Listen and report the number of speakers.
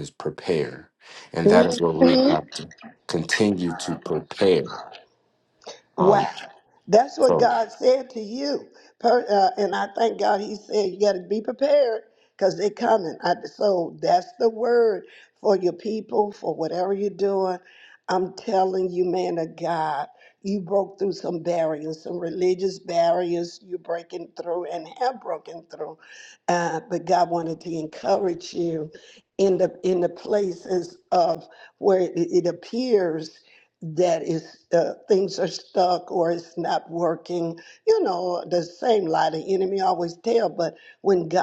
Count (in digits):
2